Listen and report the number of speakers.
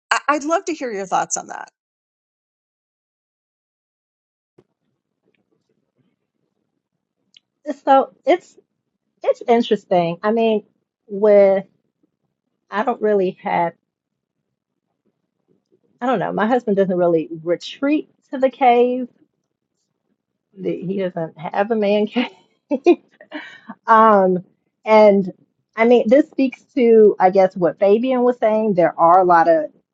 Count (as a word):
two